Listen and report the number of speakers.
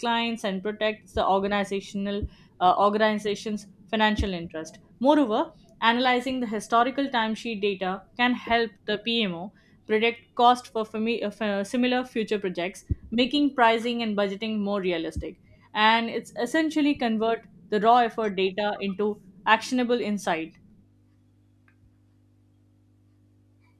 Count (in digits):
1